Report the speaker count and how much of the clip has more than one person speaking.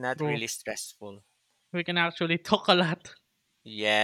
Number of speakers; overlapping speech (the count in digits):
2, about 5%